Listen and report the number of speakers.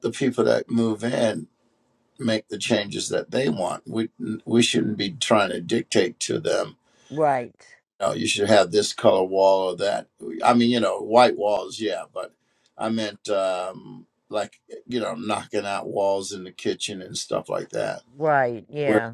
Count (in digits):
2